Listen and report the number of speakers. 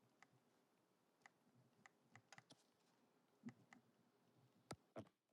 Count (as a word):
zero